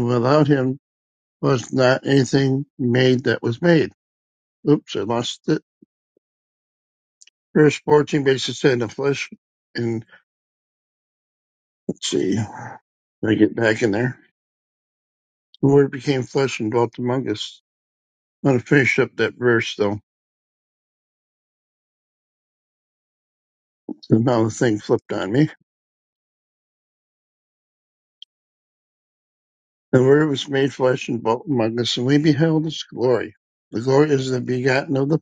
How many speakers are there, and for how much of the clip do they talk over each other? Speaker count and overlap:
1, no overlap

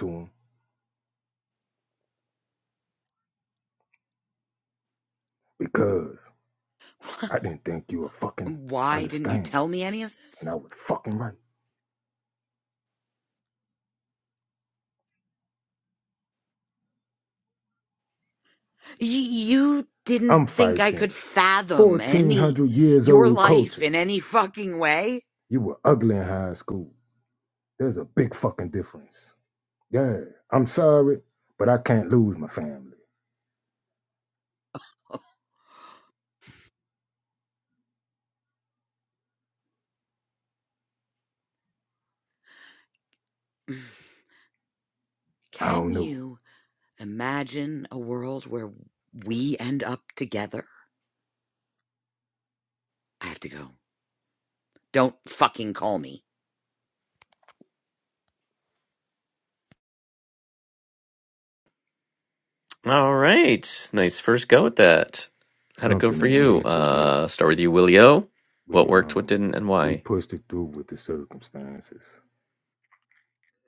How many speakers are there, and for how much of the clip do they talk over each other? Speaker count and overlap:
3, about 8%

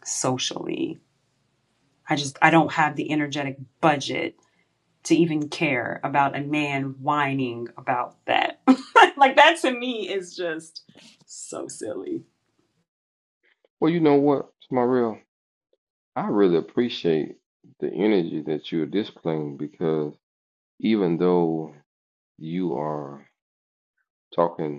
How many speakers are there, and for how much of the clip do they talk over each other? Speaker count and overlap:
2, no overlap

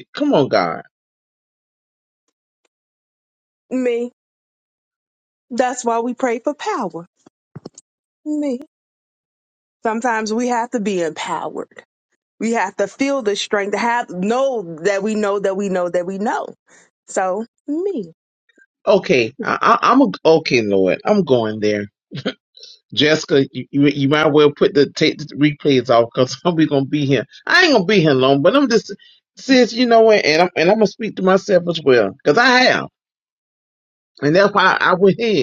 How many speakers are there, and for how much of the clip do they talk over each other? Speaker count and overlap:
2, about 1%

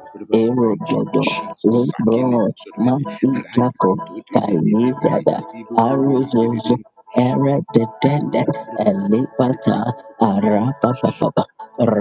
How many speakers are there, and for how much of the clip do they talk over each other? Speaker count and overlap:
2, about 38%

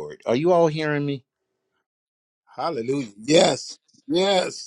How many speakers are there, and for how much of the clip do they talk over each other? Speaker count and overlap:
2, no overlap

